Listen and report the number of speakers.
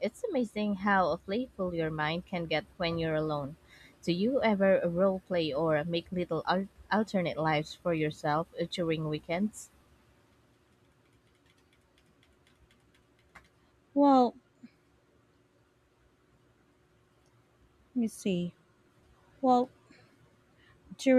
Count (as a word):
two